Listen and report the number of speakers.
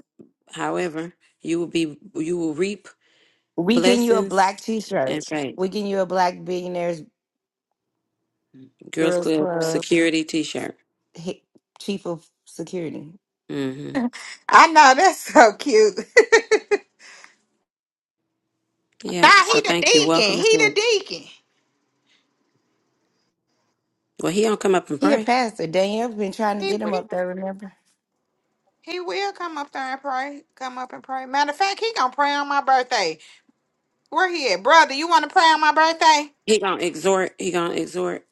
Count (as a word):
three